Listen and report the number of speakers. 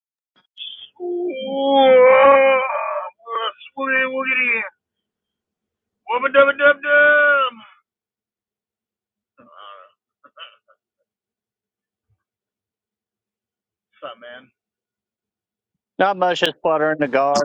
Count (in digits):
2